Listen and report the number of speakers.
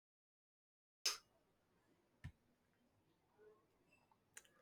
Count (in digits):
0